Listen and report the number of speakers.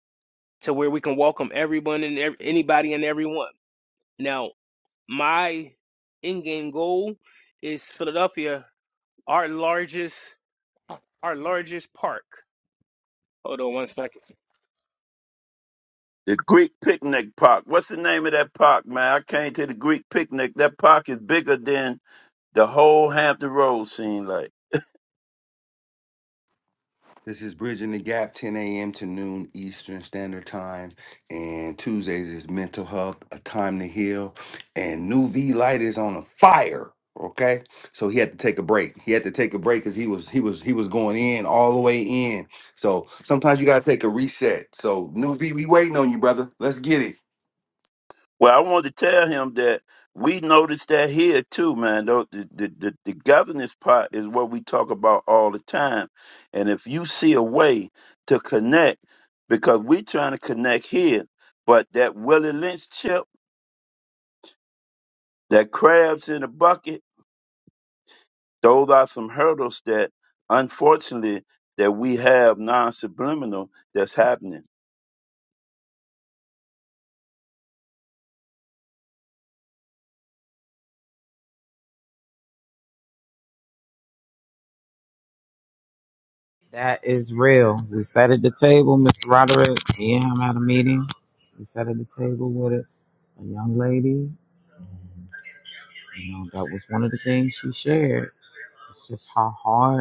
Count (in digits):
4